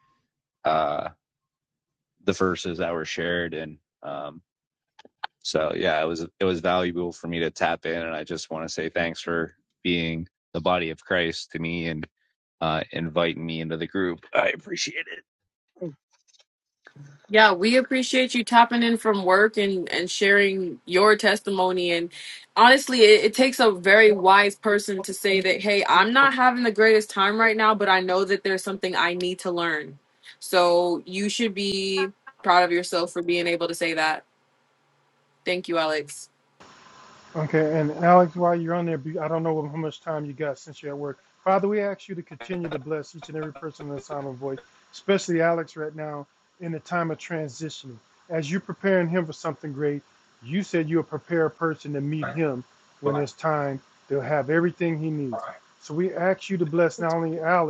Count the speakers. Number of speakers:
3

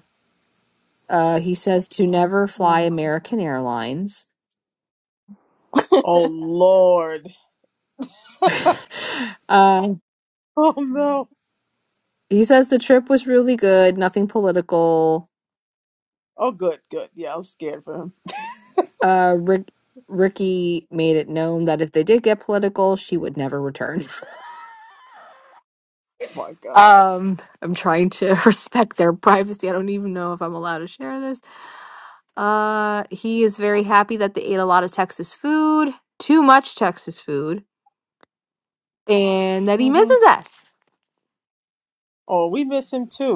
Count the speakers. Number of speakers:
2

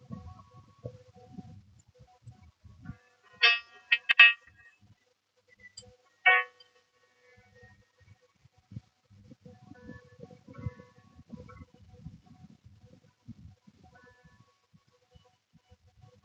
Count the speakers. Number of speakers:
0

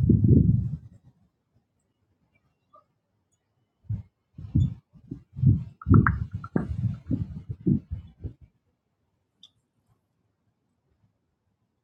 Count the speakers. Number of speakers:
0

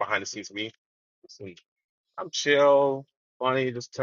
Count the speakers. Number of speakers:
1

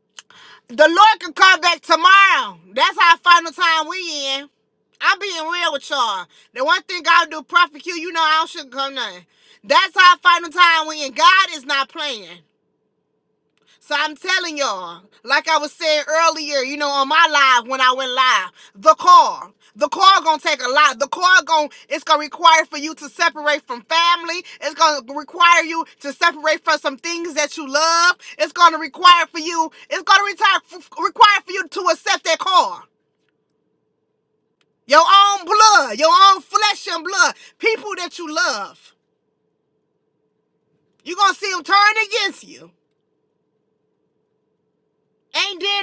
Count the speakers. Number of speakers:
1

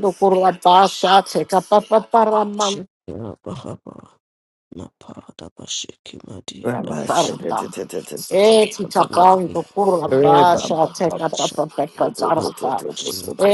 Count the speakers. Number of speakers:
3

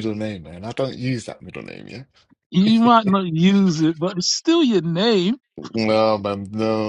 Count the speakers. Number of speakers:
2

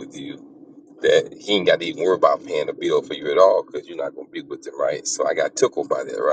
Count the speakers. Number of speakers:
1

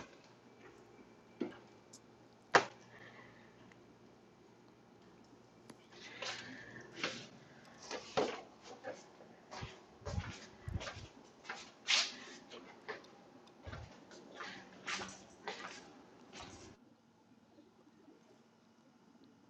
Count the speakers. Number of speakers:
0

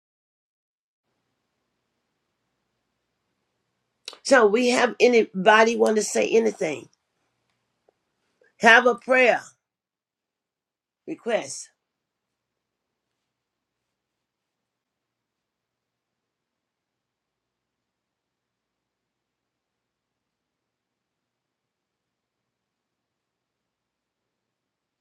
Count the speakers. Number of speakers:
1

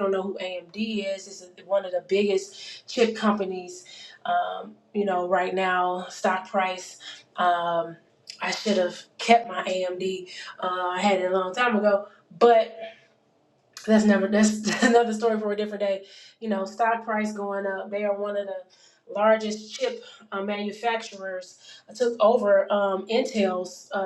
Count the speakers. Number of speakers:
1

